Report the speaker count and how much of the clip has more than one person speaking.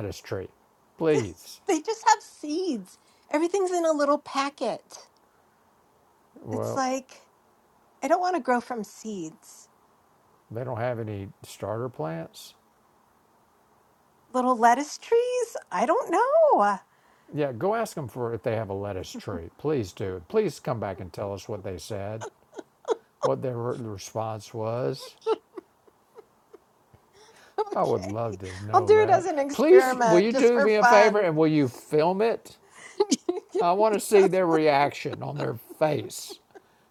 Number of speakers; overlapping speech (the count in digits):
2, about 9%